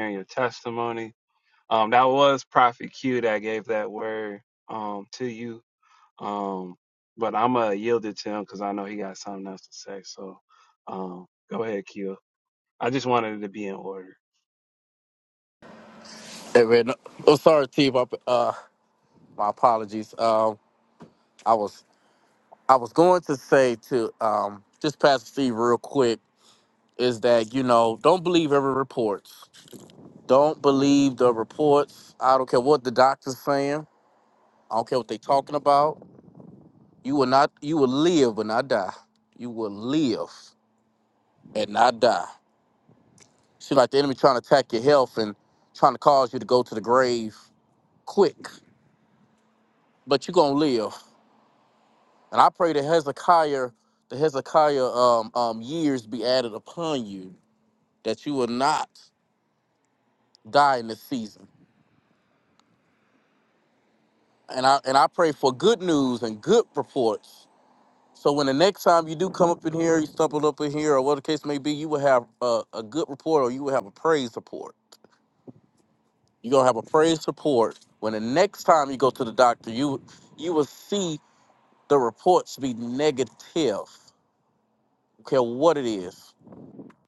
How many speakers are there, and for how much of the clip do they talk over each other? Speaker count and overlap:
two, no overlap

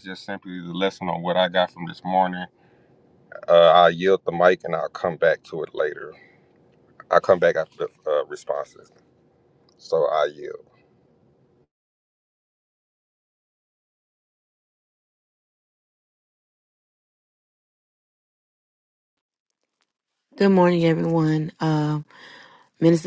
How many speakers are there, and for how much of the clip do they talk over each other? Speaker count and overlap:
two, no overlap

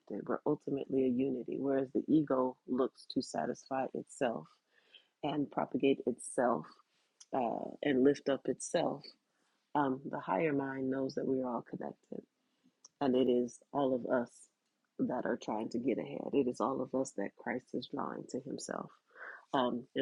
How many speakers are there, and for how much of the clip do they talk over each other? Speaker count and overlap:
one, no overlap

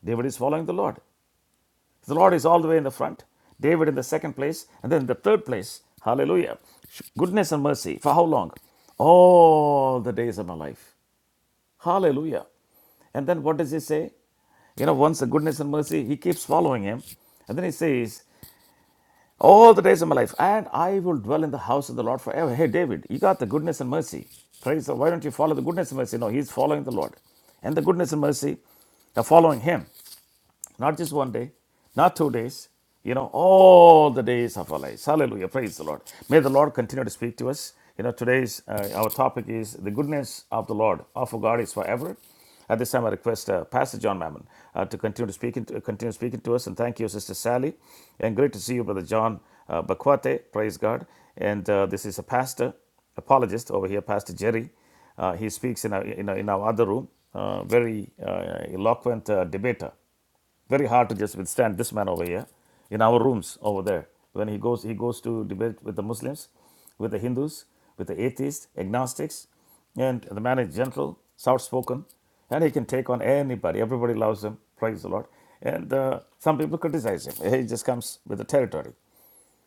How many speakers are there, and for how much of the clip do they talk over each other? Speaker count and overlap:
one, no overlap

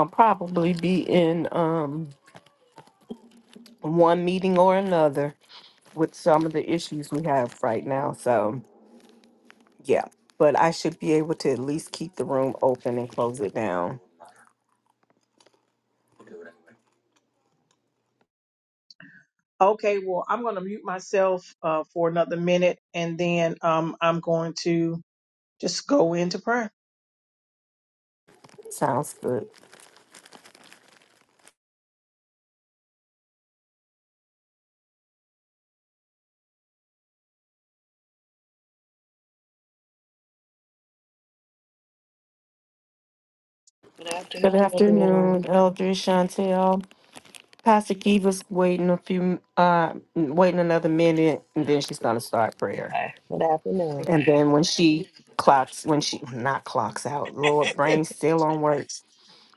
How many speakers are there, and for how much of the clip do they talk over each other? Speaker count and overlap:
three, about 2%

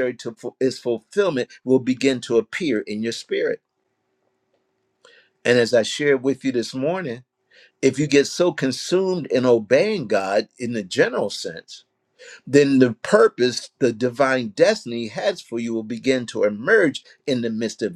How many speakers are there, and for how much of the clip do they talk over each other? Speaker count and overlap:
one, no overlap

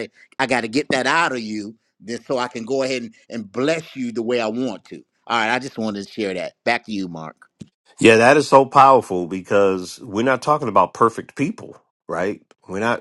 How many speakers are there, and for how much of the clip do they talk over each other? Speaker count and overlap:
two, no overlap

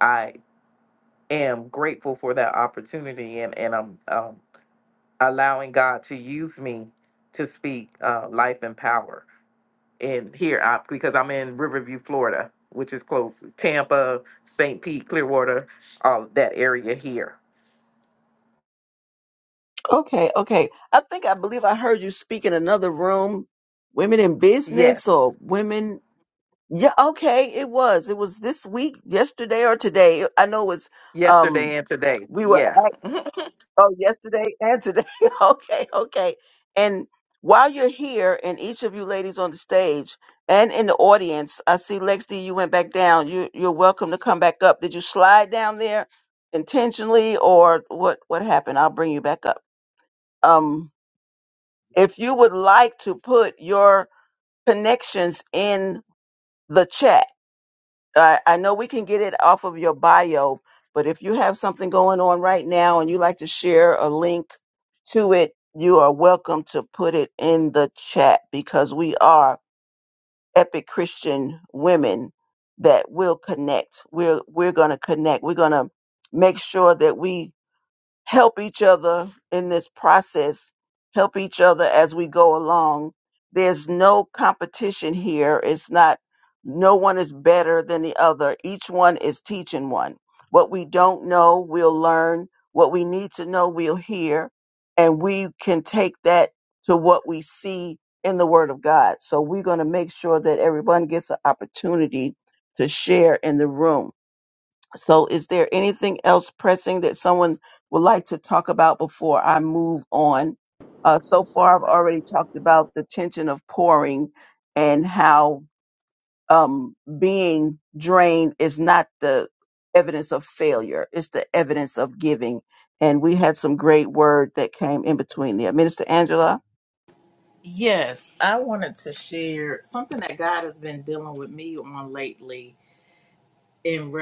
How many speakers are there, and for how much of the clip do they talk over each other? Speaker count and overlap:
three, about 1%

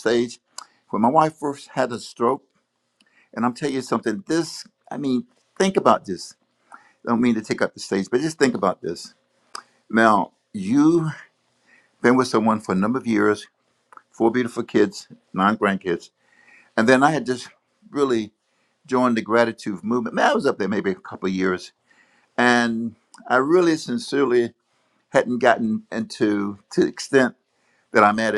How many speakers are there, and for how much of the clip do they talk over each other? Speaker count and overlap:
one, no overlap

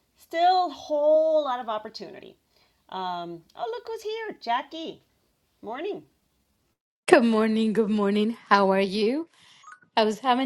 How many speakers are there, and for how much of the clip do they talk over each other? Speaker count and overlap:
two, no overlap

